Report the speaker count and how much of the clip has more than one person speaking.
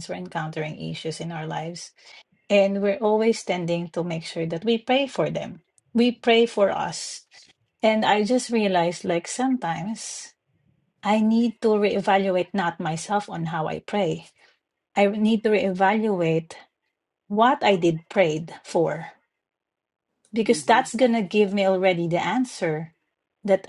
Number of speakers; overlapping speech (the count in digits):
1, no overlap